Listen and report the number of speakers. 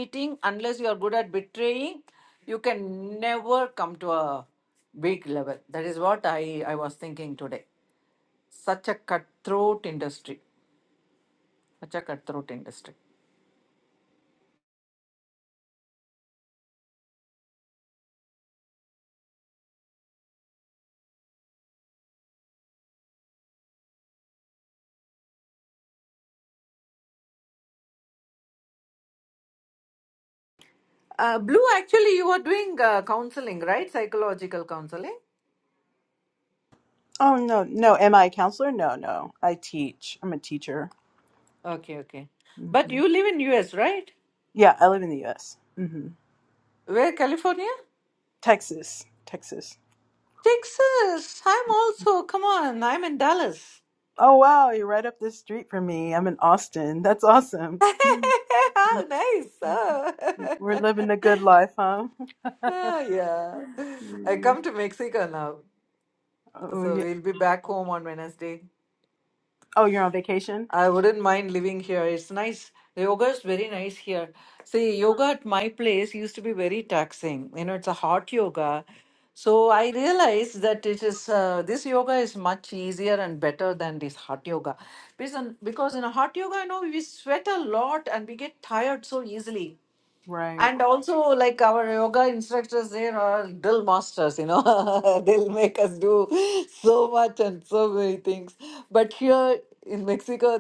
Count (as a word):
two